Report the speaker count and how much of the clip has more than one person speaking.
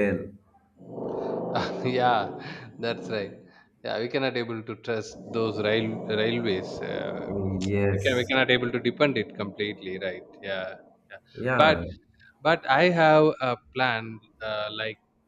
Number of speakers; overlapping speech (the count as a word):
two, about 5%